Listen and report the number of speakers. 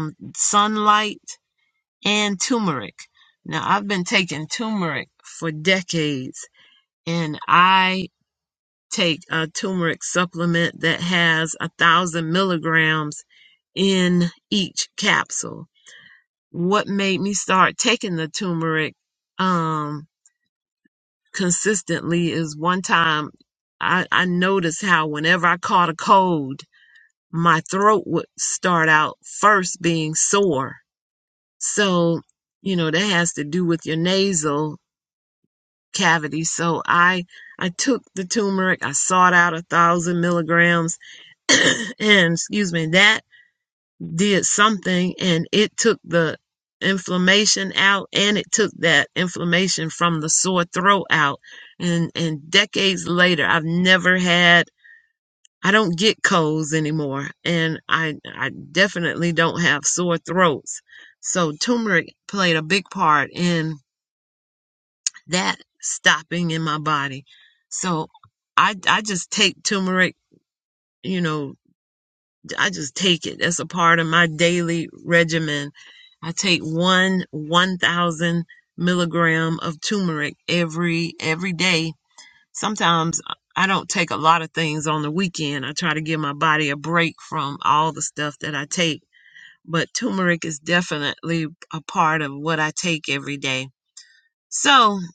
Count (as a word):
one